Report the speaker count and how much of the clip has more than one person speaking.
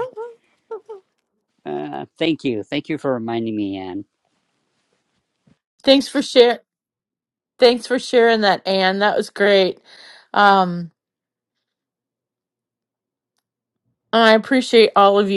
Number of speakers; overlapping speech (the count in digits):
2, no overlap